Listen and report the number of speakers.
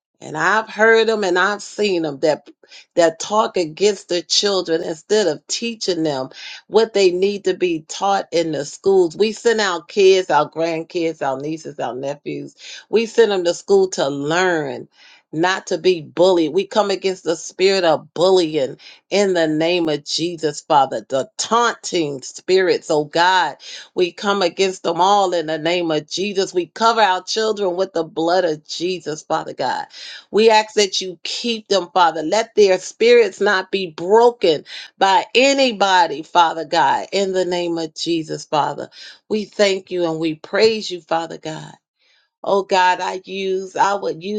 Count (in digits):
1